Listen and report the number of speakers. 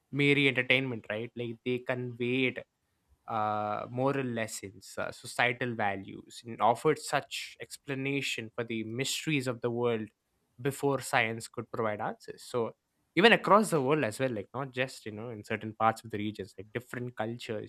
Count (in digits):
1